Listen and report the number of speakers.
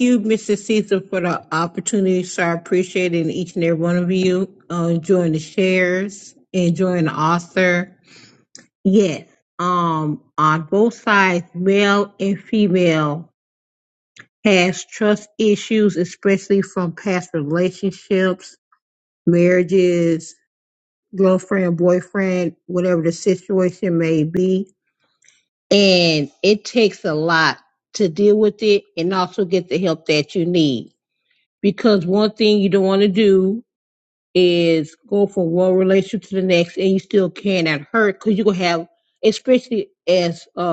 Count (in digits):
1